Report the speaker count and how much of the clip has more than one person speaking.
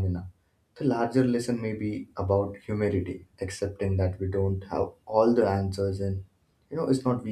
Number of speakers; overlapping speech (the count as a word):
one, no overlap